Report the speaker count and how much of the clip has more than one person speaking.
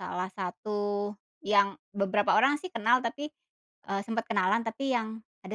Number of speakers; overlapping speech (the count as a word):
one, no overlap